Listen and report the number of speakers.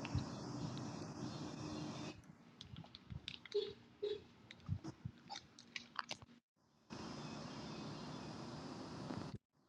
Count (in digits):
0